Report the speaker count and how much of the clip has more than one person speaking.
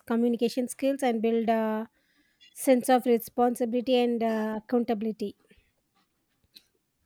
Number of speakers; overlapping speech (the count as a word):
one, no overlap